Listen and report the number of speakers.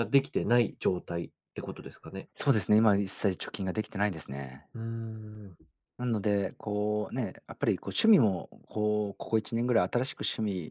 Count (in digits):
2